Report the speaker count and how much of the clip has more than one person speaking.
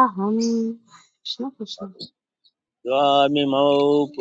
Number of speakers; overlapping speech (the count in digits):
2, no overlap